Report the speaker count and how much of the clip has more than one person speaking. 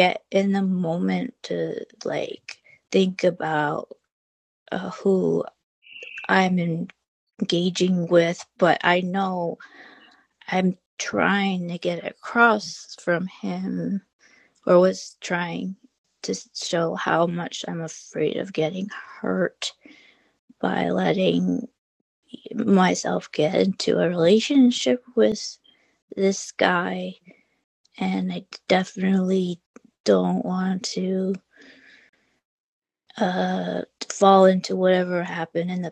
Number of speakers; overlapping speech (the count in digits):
1, no overlap